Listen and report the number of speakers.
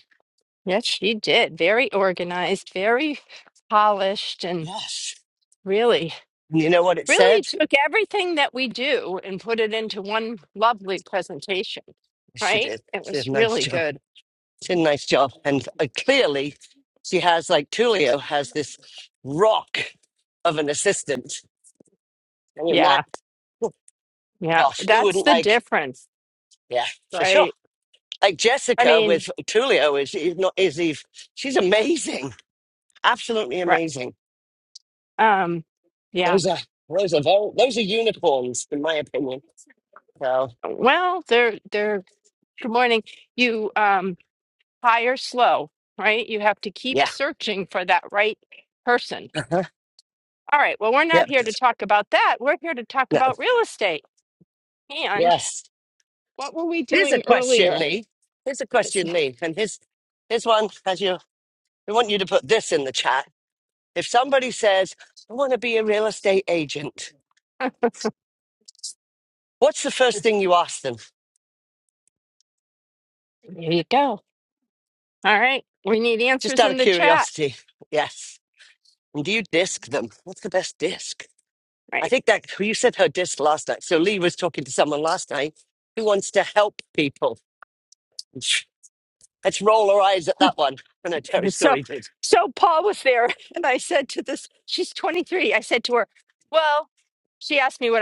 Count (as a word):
two